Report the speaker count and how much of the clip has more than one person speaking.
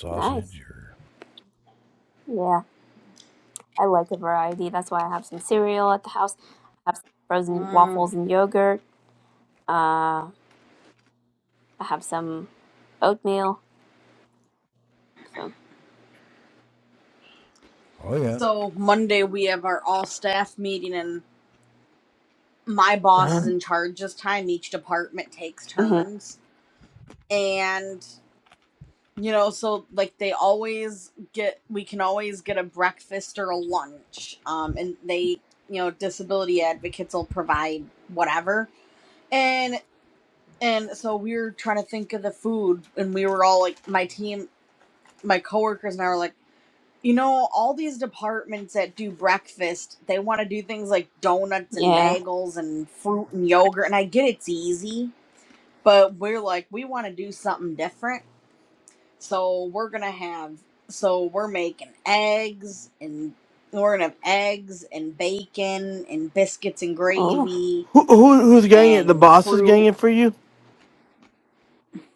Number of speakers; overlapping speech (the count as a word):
four, about 5%